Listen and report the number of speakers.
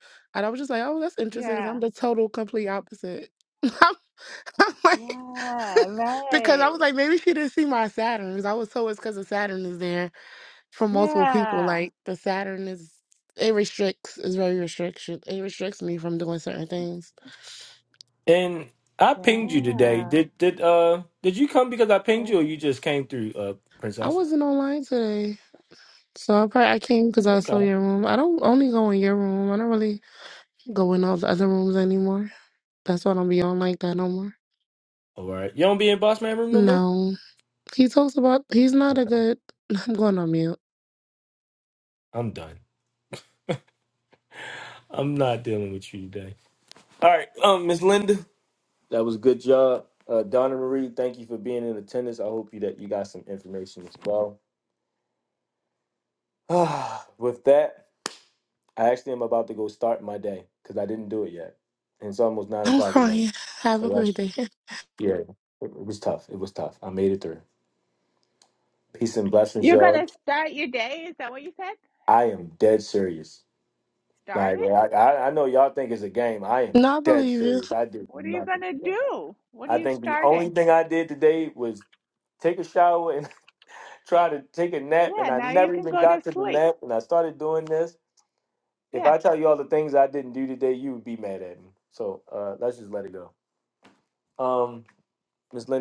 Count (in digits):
3